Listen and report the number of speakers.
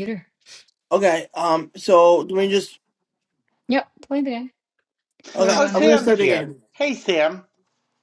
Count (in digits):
3